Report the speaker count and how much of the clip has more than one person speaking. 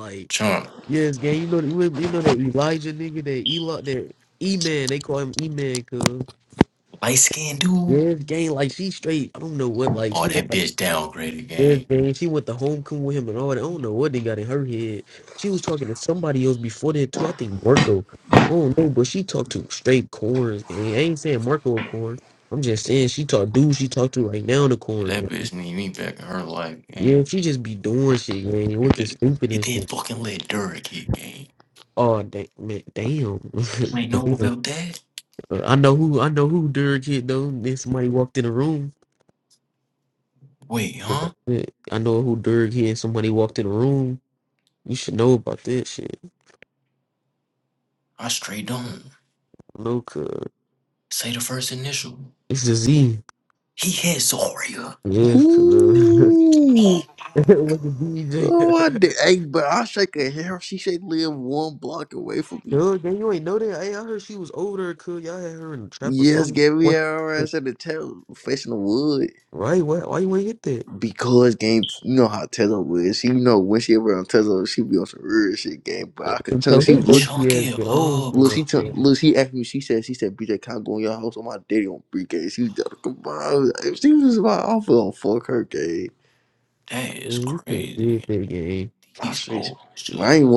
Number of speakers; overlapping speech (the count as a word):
three, about 10%